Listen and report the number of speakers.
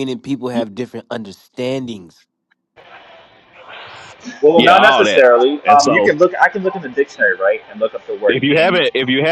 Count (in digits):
3